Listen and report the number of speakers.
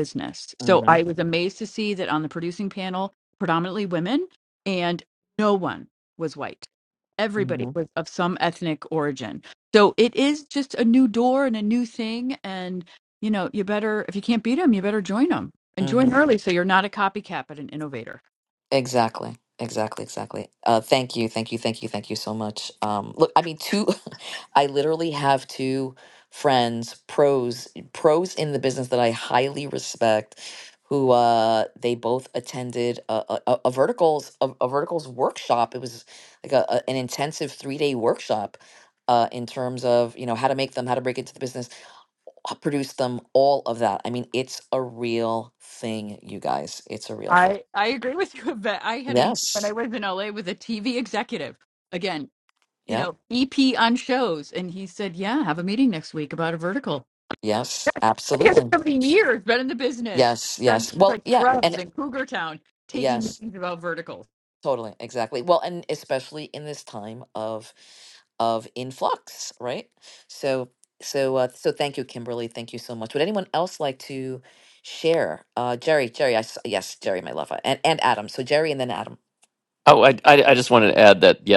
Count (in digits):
3